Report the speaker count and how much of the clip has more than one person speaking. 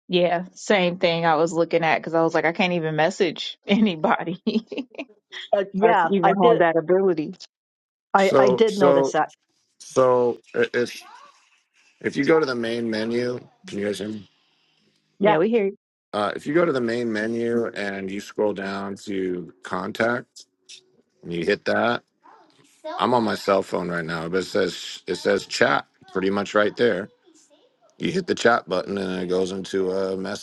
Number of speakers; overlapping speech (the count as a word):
three, about 6%